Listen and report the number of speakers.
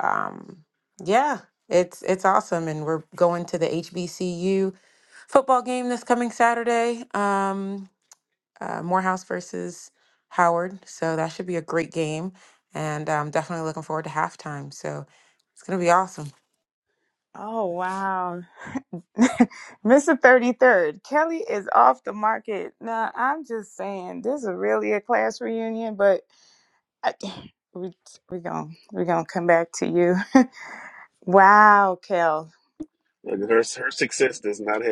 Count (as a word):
three